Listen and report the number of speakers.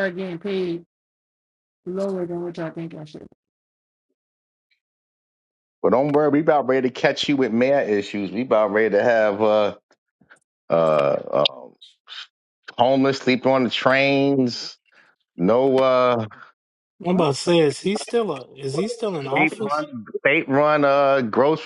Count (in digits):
3